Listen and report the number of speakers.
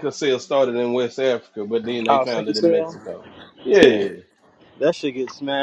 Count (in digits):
2